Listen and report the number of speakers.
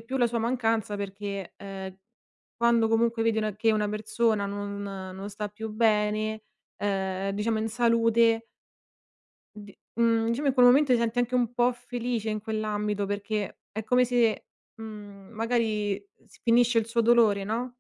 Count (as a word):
one